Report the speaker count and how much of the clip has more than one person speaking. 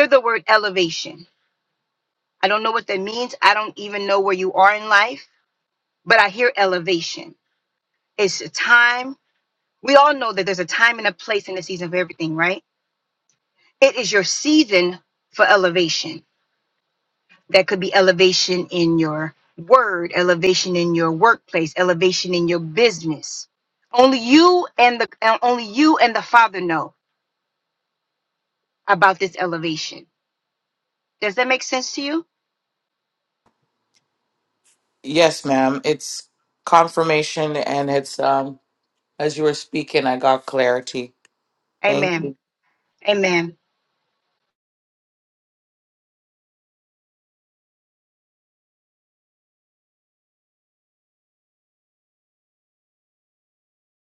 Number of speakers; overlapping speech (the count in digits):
2, about 1%